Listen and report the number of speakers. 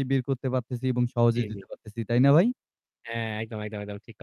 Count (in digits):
2